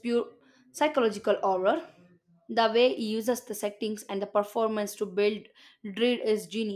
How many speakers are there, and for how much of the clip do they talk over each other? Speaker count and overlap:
one, no overlap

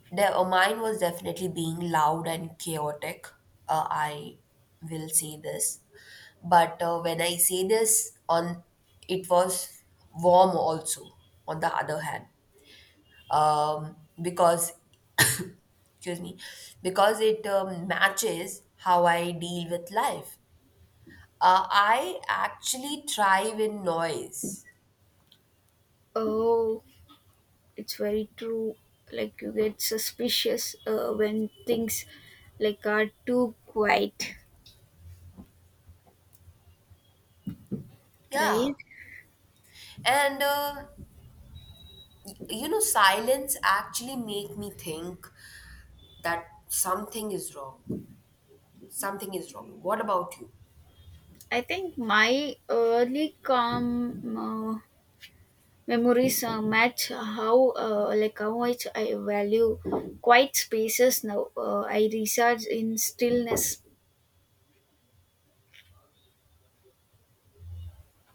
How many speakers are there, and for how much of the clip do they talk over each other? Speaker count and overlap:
two, about 1%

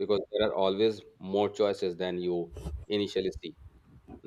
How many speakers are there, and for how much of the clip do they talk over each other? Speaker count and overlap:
one, no overlap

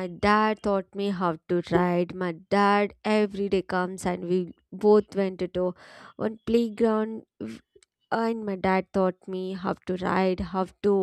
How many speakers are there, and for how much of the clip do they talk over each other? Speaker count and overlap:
one, no overlap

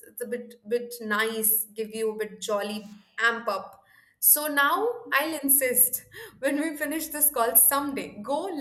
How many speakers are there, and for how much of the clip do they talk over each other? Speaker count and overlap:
one, no overlap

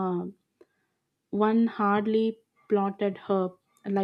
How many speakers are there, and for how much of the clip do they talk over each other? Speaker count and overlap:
one, no overlap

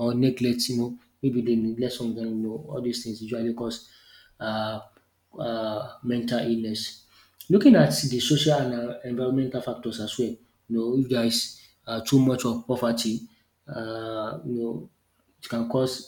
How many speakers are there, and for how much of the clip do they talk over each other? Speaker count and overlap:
one, no overlap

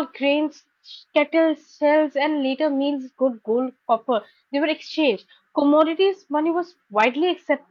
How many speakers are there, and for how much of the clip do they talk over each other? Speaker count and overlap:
one, no overlap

